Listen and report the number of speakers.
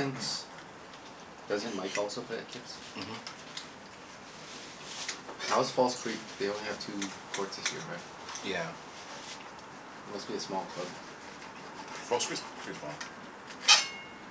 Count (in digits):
2